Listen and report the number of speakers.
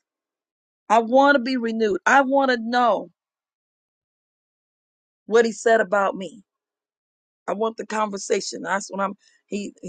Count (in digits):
1